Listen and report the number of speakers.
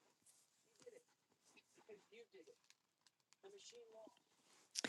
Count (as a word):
zero